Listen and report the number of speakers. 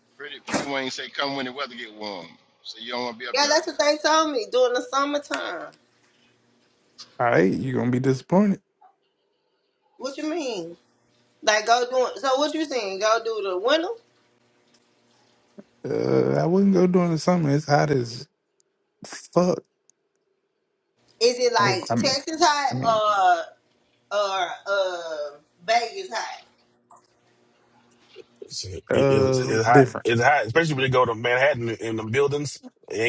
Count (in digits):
4